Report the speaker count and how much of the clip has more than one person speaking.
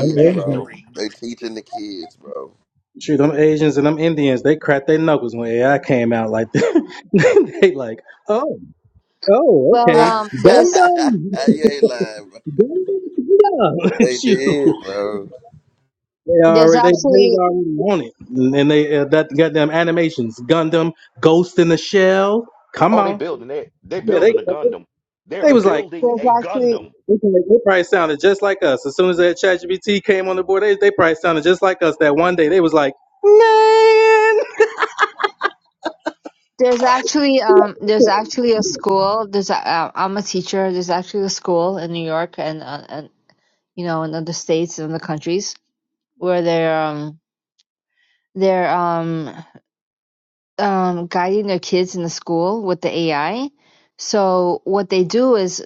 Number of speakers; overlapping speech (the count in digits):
4, about 9%